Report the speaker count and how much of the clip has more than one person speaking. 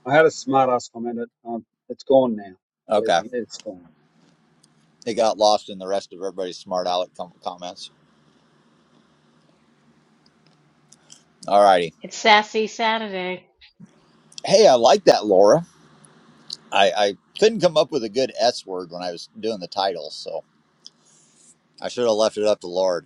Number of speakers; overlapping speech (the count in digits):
3, about 1%